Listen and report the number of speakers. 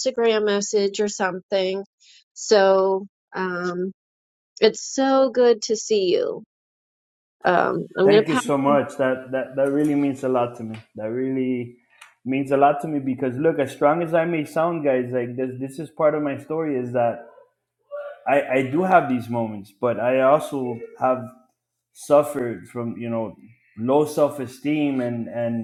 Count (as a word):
two